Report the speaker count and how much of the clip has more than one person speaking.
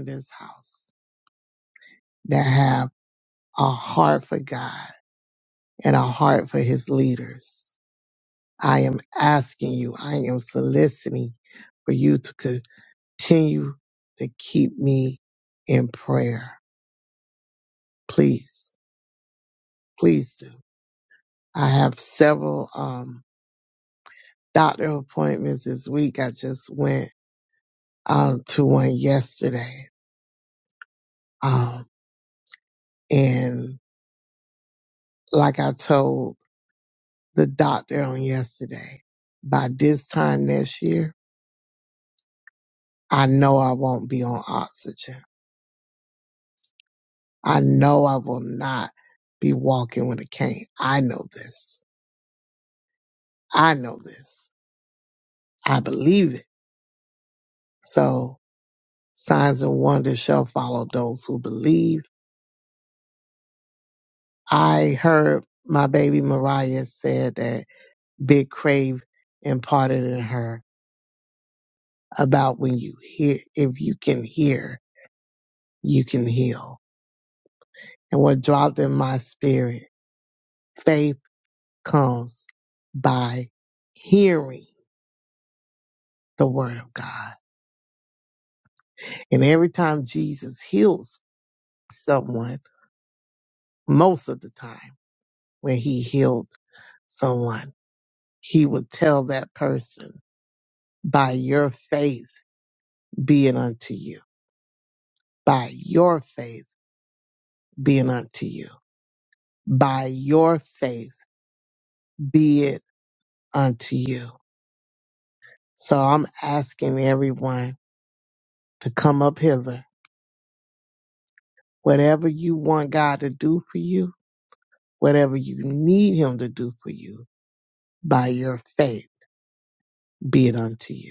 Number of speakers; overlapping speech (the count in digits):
1, no overlap